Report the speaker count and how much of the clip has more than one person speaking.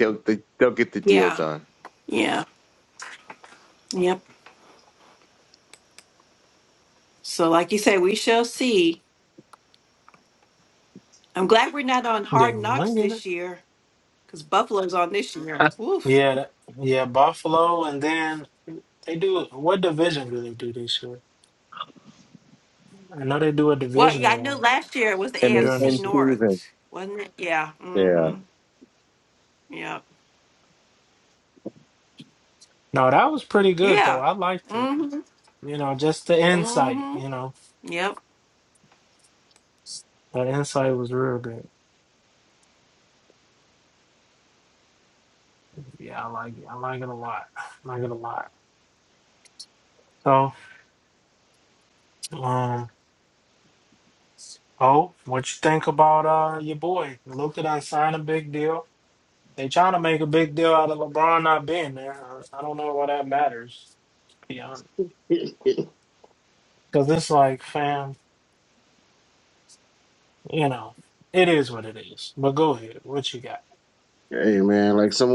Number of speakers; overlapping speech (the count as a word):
four, about 6%